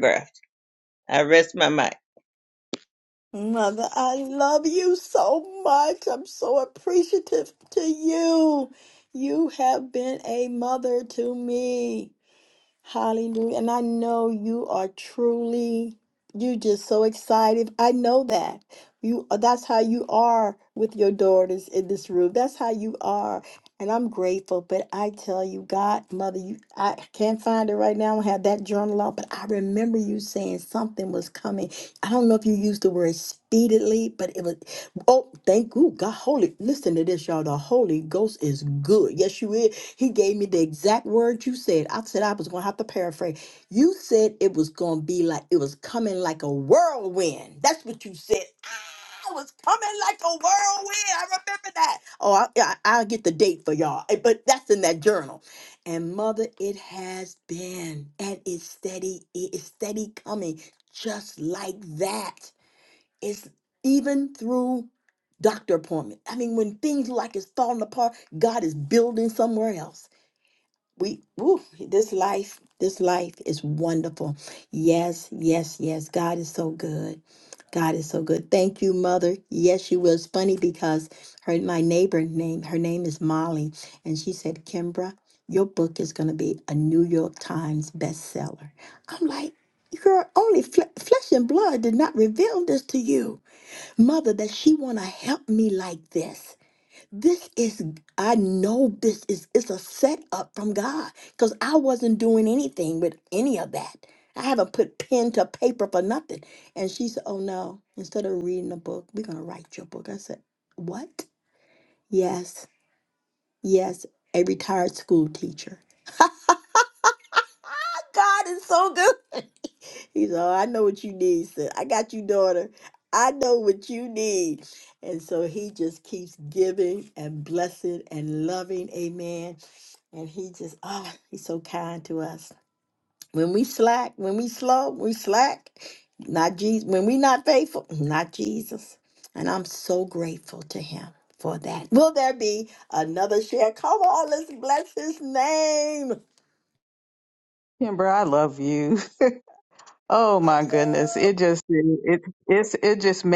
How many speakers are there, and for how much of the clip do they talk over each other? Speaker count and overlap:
3, no overlap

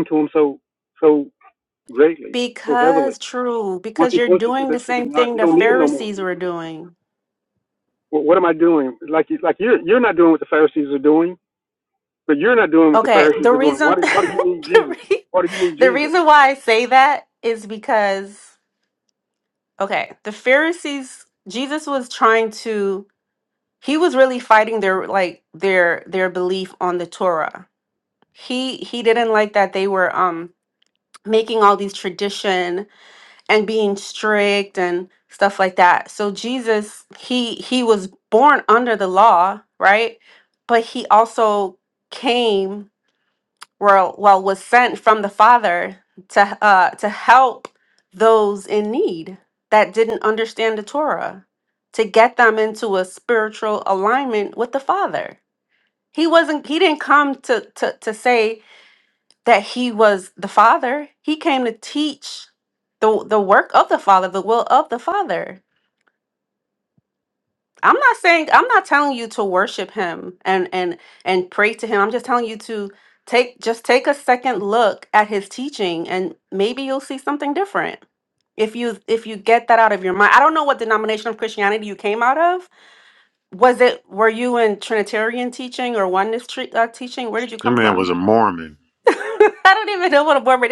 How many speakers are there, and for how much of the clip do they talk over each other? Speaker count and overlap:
3, about 6%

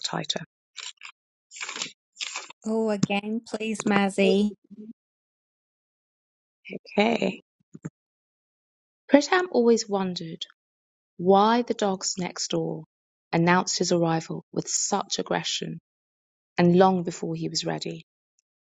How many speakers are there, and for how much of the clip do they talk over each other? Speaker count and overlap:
2, no overlap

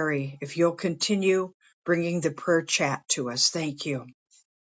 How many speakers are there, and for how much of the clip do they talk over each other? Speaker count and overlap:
1, no overlap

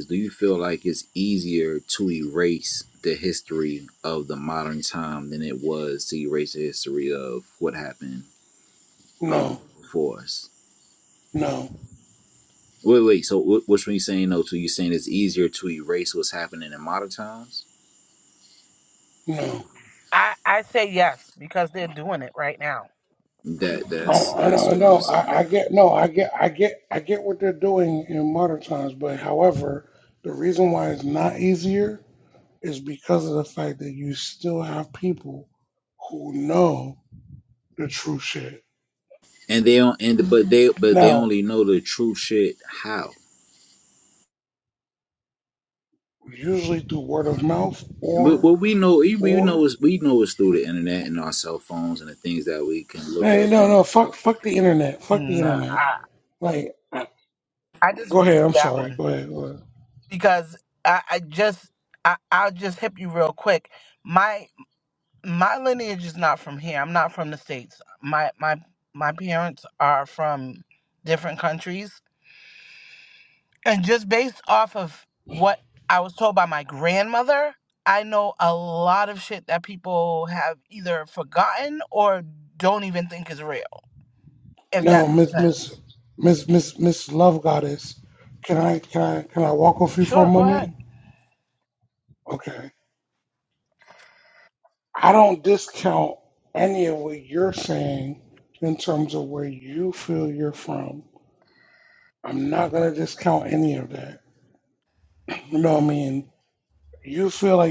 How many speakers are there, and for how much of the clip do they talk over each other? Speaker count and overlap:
3, about 6%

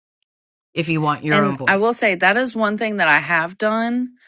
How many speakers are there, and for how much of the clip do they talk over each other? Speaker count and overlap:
2, about 12%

